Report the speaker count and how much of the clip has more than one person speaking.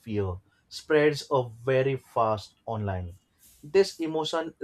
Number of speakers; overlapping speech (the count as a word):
one, no overlap